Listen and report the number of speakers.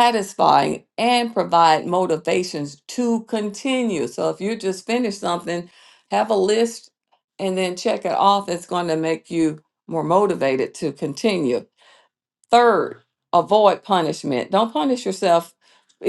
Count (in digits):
1